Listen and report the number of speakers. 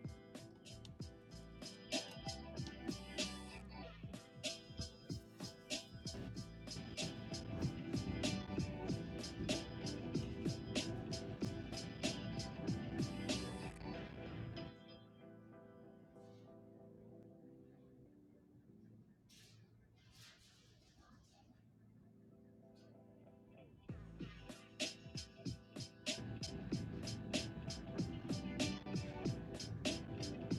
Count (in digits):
0